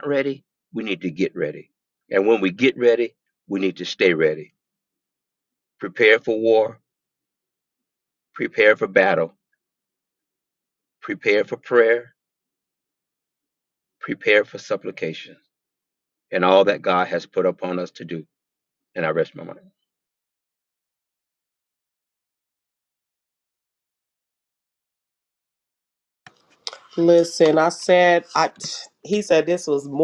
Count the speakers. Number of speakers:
2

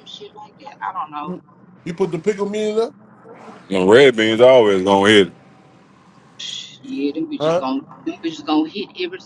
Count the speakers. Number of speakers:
3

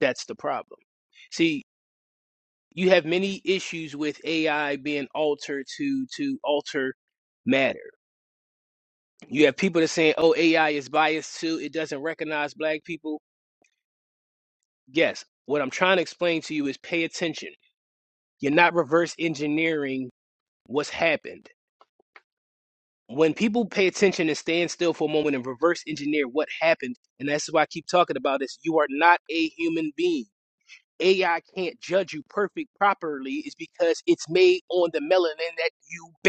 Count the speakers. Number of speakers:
1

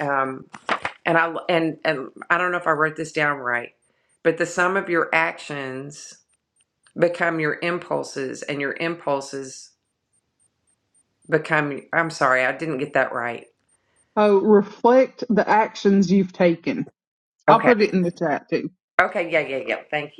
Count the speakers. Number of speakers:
2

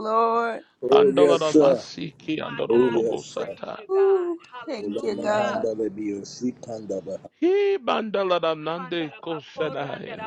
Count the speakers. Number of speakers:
4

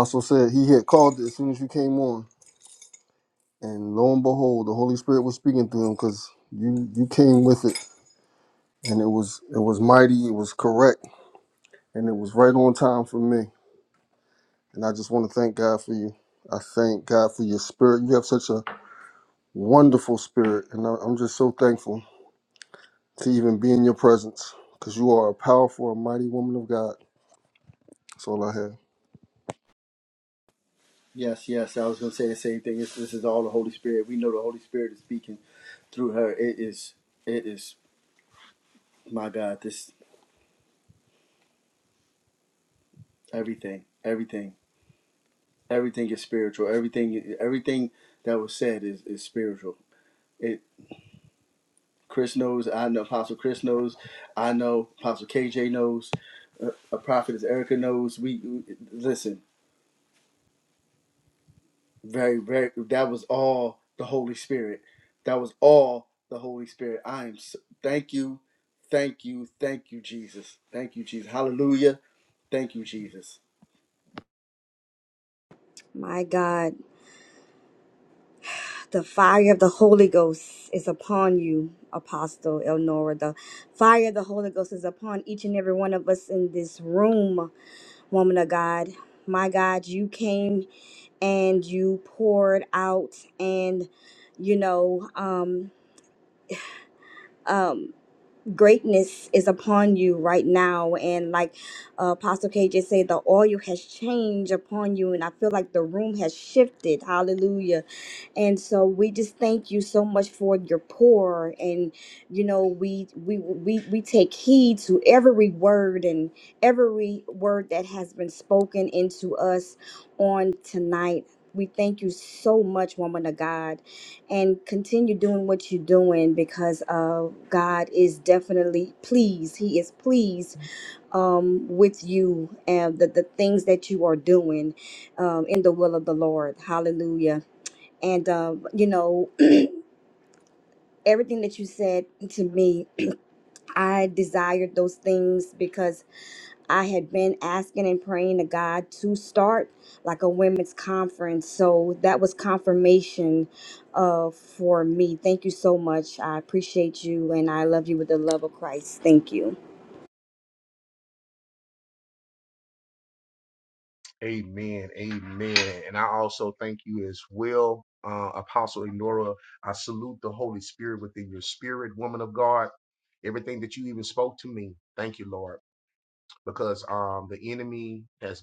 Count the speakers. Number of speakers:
4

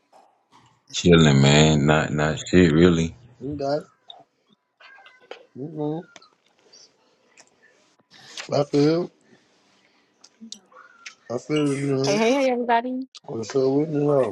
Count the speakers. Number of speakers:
3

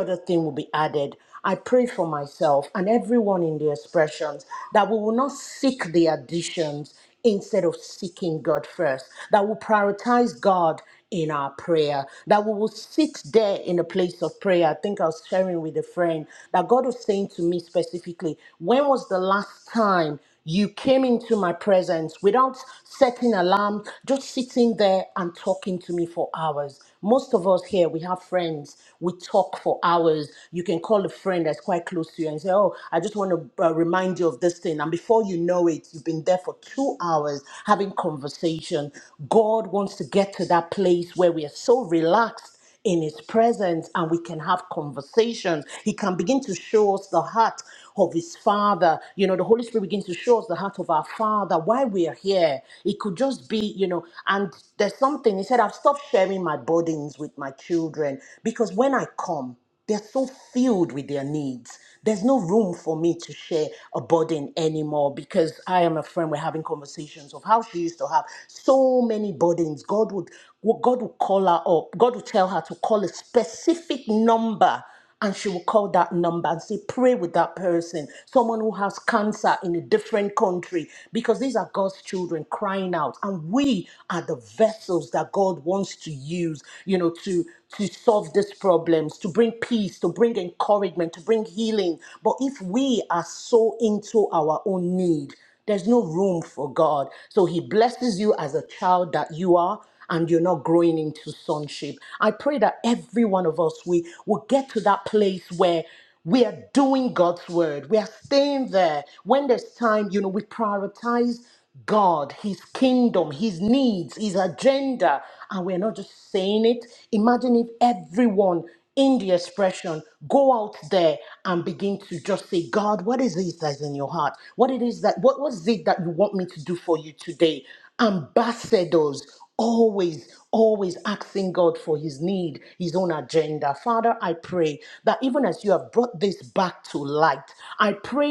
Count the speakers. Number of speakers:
1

